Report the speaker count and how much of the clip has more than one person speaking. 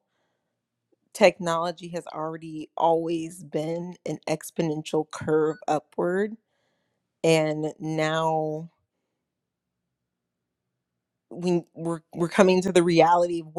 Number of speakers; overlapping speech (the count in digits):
1, no overlap